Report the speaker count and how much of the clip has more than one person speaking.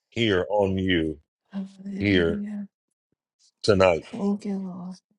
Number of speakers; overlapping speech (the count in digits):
2, about 8%